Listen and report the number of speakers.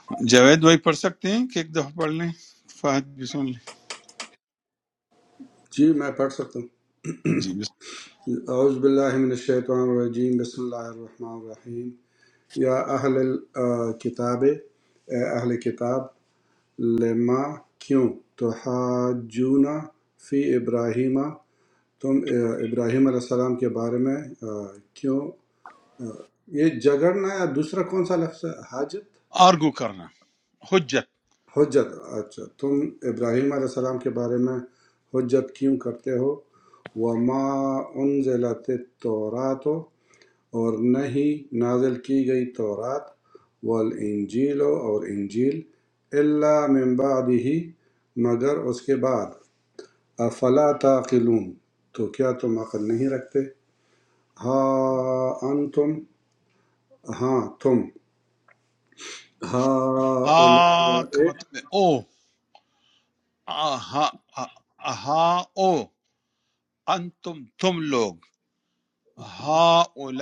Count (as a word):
two